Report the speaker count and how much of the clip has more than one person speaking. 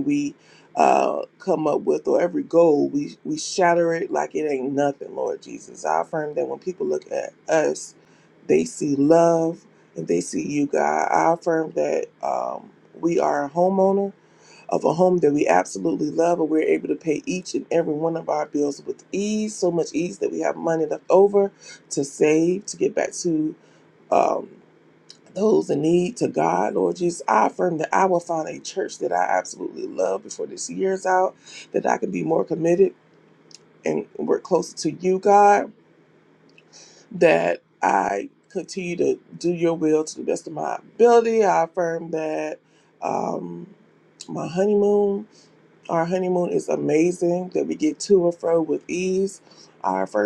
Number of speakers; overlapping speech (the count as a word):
one, no overlap